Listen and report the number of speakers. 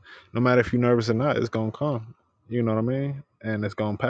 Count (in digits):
1